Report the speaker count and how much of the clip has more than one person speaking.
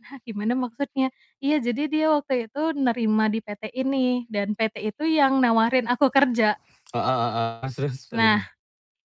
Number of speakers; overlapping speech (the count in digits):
2, about 3%